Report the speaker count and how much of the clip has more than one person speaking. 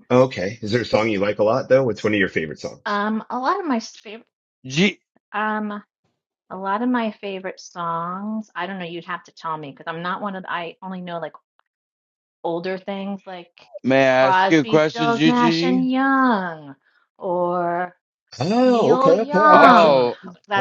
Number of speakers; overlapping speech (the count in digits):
3, about 16%